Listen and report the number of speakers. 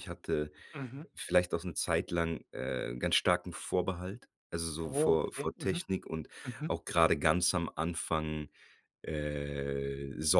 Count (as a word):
two